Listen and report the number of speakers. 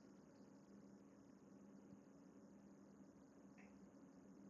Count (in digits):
0